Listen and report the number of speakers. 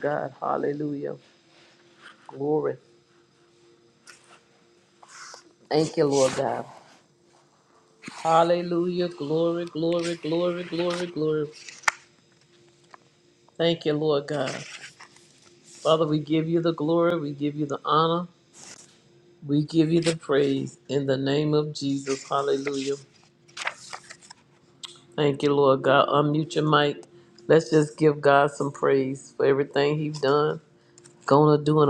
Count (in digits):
1